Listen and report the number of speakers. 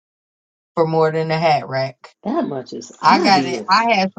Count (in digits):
2